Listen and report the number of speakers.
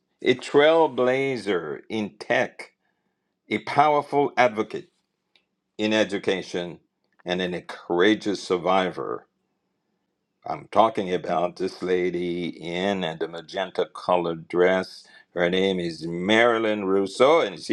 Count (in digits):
1